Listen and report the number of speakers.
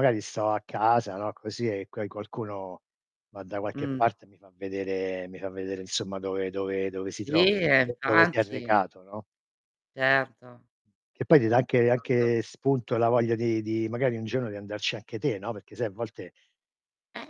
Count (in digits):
2